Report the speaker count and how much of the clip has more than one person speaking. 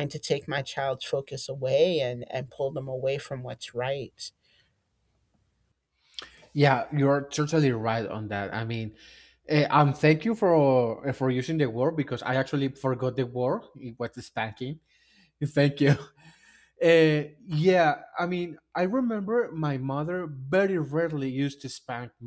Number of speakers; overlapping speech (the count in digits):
2, no overlap